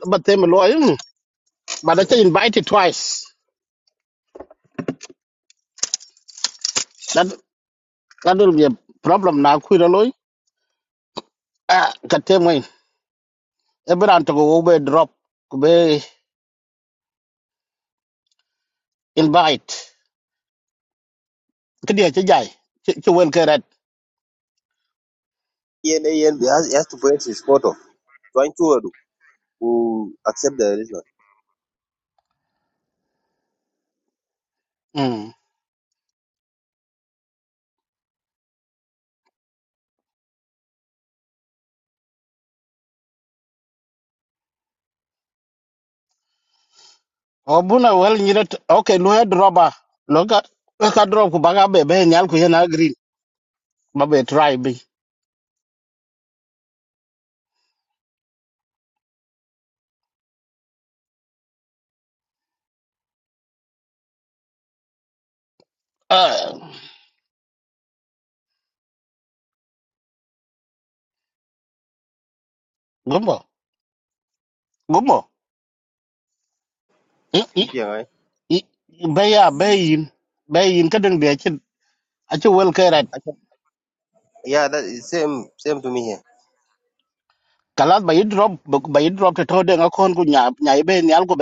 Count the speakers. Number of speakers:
two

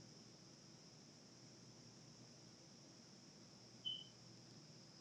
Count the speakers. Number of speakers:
zero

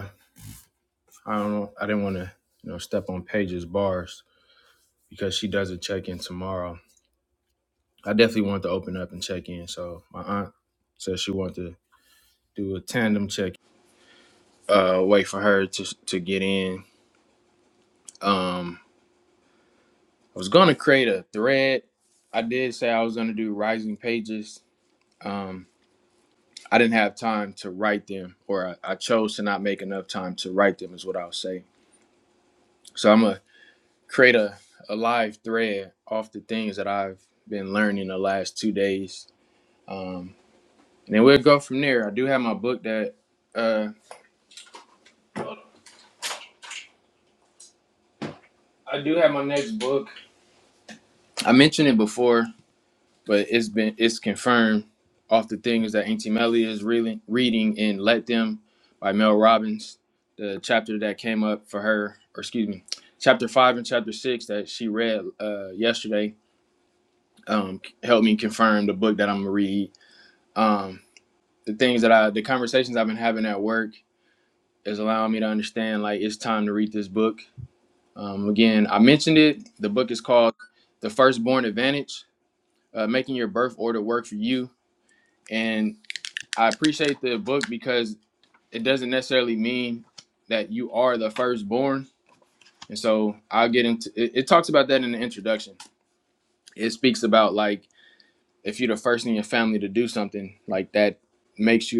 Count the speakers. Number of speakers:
one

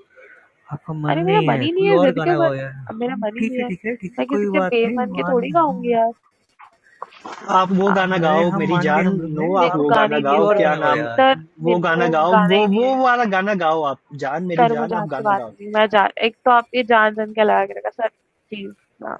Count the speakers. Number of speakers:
three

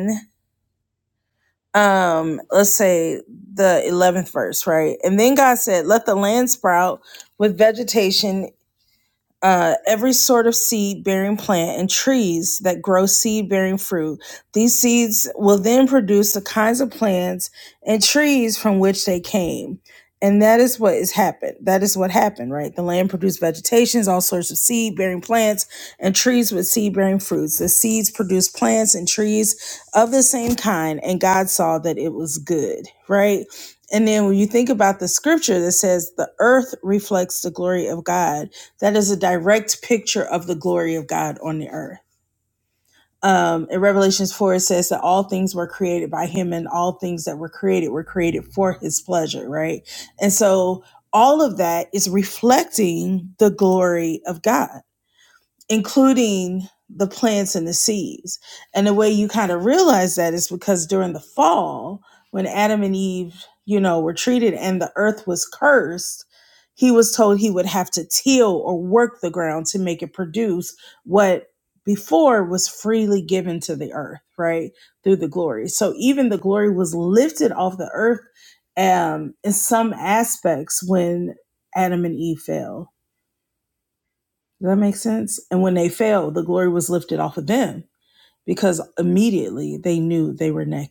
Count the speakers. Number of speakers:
one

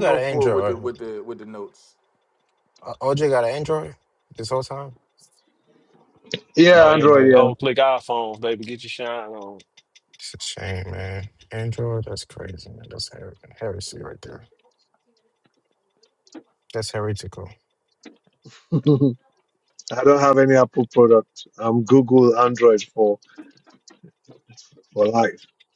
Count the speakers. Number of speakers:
four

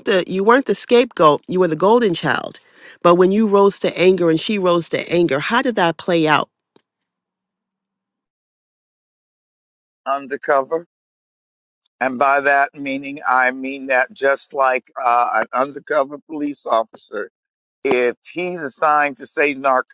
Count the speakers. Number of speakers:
two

